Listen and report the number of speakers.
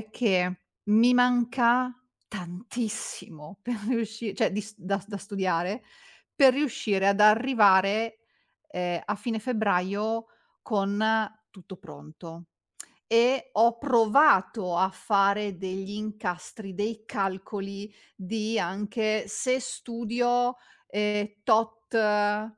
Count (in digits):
1